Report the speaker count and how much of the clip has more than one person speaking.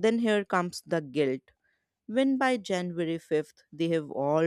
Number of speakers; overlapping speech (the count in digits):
1, no overlap